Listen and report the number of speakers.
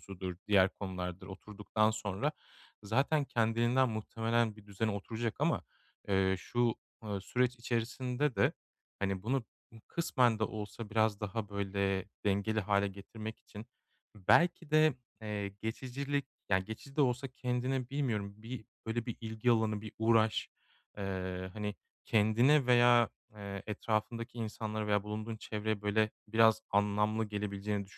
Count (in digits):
1